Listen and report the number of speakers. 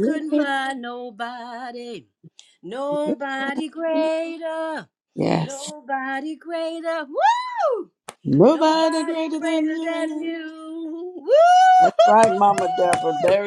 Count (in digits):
2